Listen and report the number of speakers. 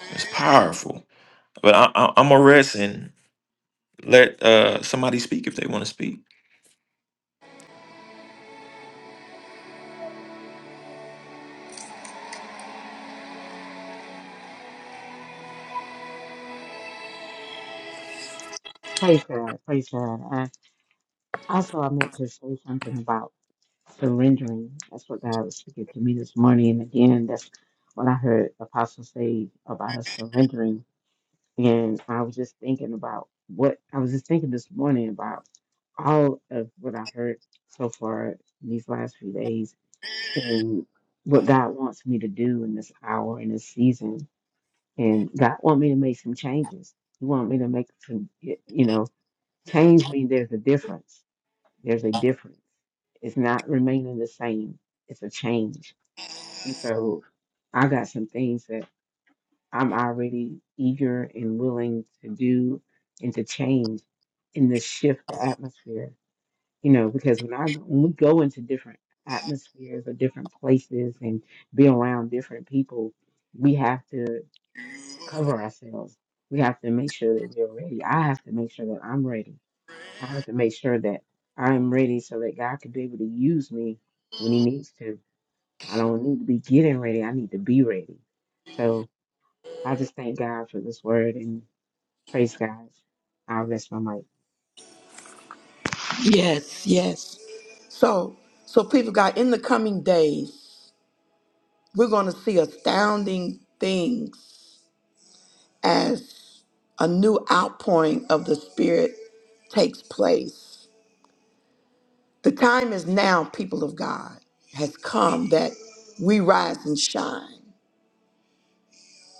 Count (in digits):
3